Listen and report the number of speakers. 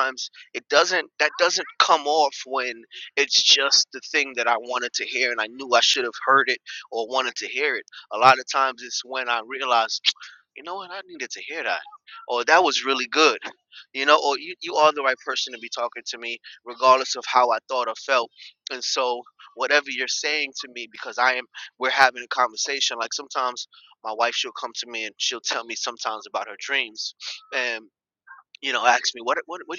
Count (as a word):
one